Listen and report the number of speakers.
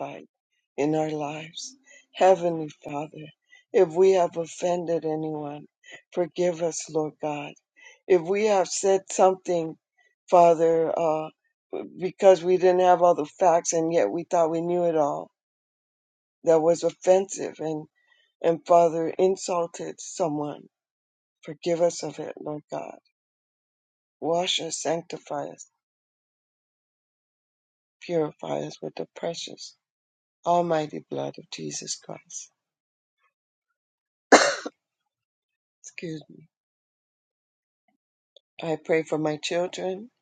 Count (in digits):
1